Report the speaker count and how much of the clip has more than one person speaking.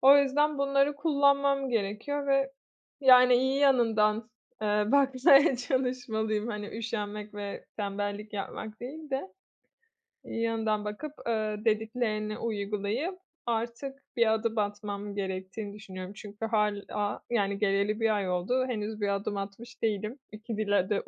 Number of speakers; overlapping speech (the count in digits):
1, no overlap